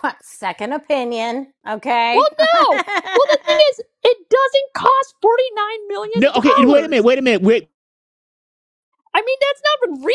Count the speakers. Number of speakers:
three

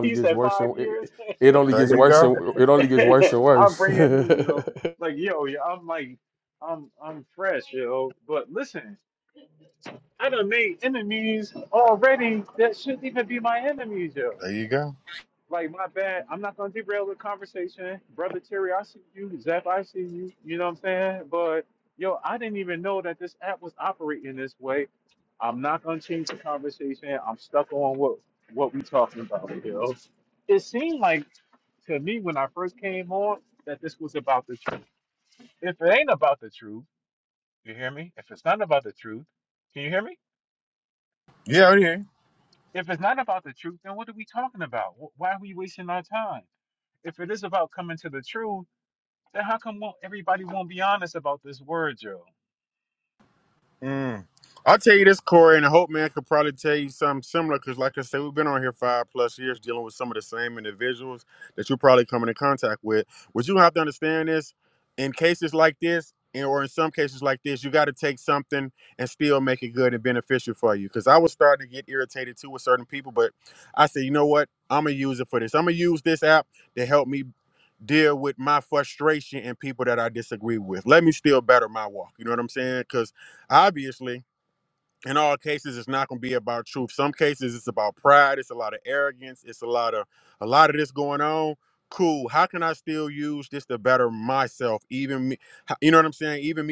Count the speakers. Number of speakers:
three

